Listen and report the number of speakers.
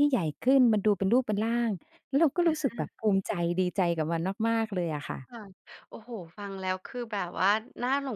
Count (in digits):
2